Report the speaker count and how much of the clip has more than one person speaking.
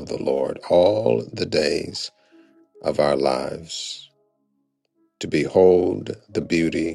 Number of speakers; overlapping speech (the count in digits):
1, no overlap